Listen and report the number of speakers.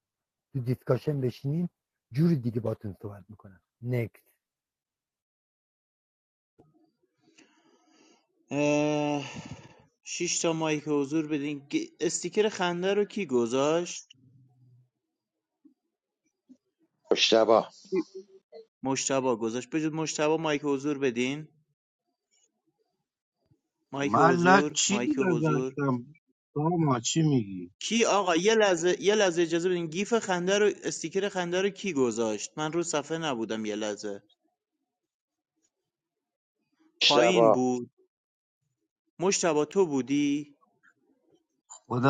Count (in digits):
4